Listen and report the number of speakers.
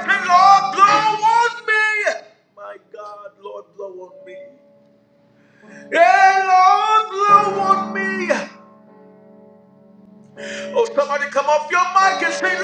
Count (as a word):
one